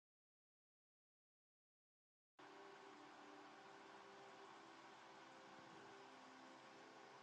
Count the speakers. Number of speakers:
0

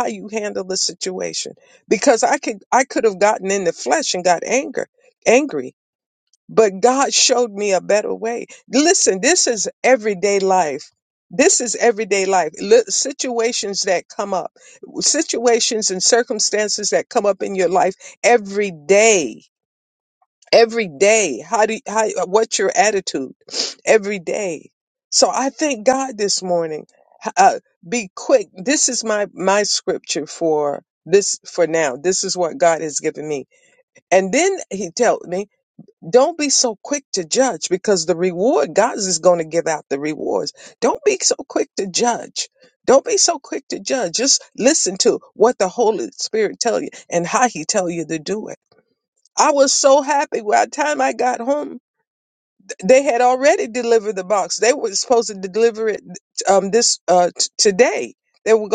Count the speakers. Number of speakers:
1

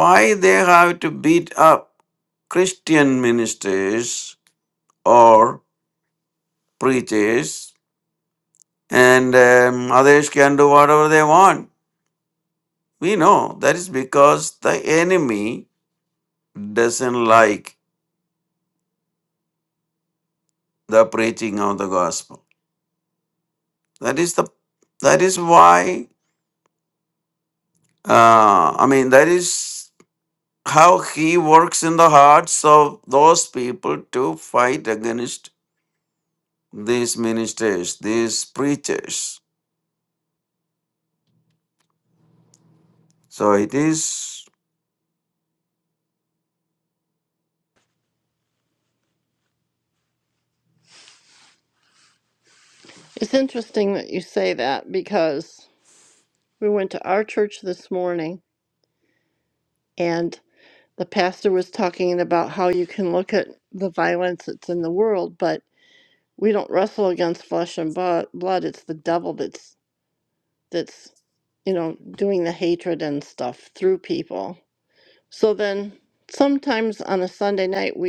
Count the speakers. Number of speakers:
2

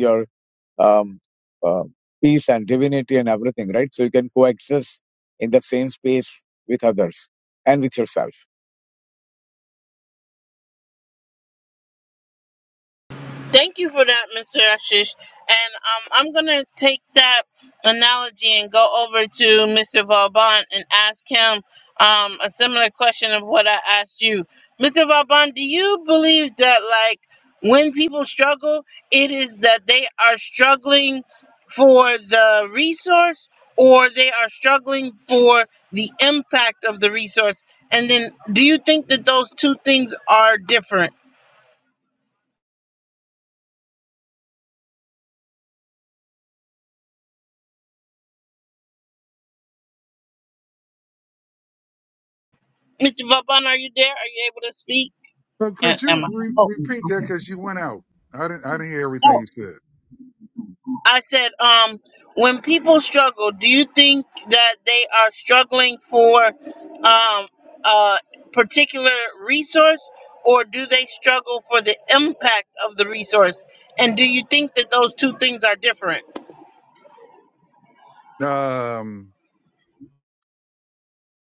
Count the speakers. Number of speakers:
3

